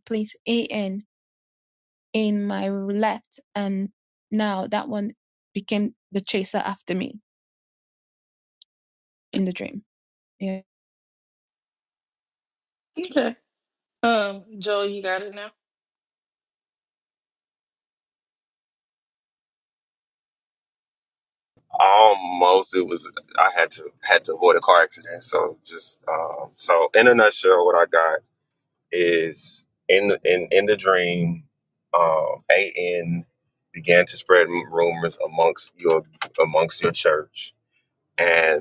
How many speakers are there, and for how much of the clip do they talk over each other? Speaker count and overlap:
three, no overlap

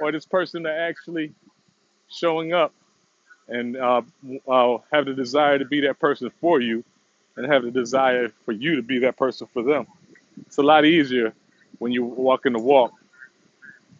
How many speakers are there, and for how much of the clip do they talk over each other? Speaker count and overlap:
one, no overlap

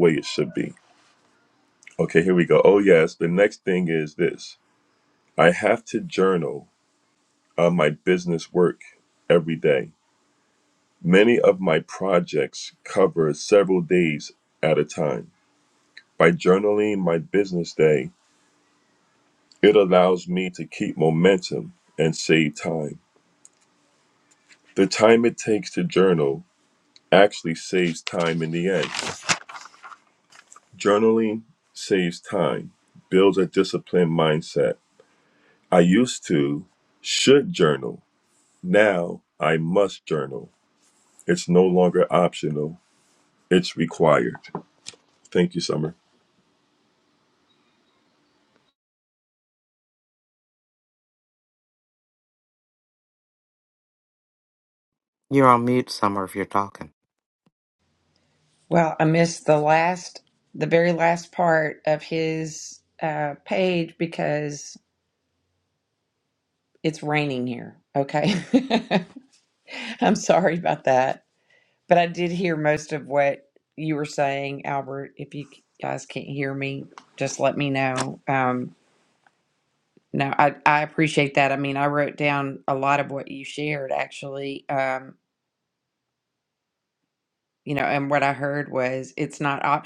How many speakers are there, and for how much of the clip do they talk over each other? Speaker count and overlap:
three, no overlap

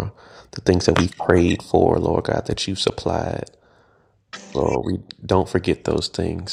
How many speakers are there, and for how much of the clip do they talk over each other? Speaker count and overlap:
one, no overlap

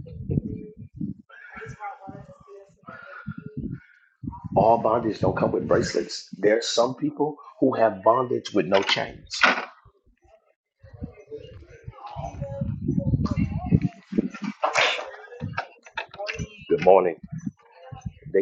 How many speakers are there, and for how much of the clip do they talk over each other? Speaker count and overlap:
one, no overlap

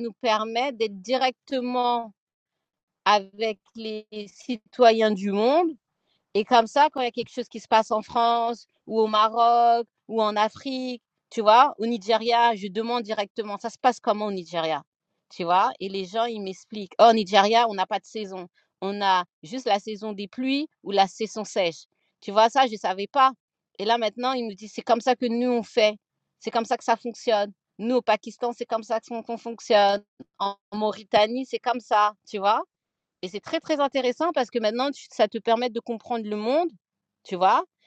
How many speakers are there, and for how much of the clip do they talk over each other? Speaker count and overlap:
one, no overlap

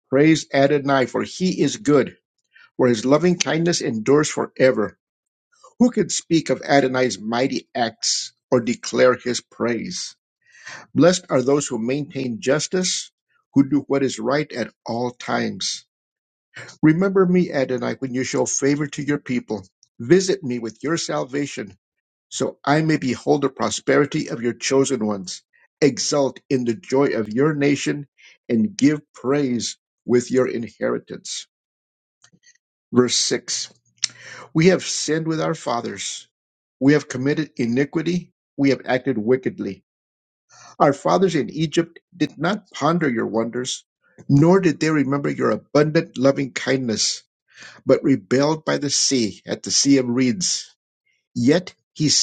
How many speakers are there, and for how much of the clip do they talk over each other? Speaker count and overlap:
one, no overlap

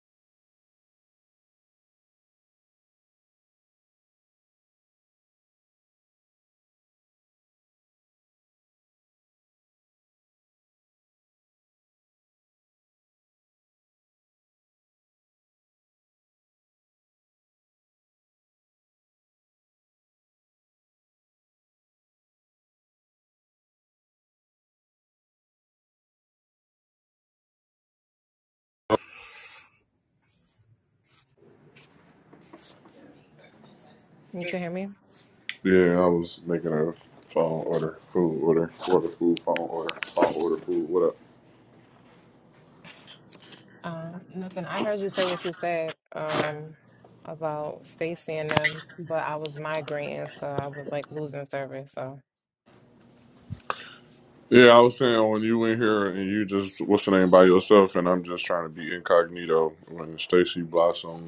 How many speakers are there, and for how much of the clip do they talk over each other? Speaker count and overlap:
two, no overlap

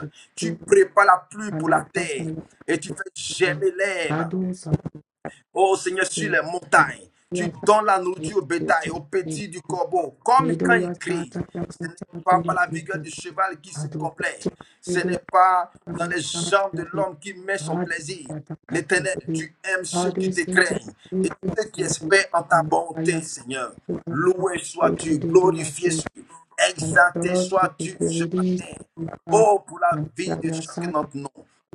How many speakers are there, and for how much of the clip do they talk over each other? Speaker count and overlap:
two, about 46%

